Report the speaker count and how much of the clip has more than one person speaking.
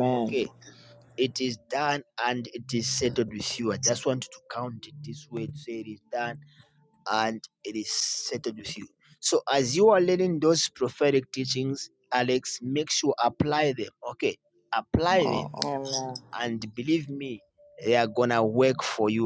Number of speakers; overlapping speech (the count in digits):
2, about 3%